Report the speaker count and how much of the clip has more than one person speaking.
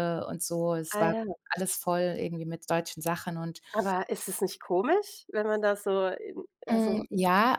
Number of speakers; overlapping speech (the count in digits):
2, about 11%